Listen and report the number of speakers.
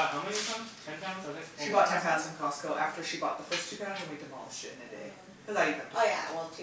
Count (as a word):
three